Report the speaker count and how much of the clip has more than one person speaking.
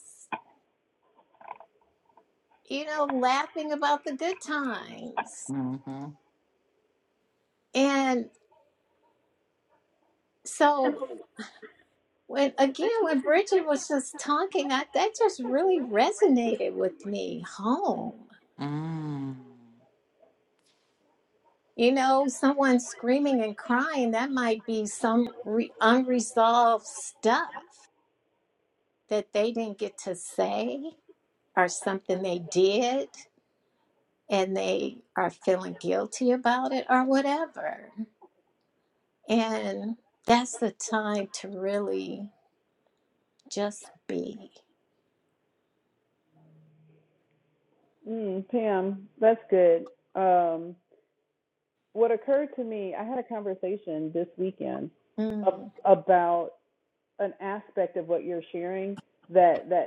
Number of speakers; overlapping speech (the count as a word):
three, under 1%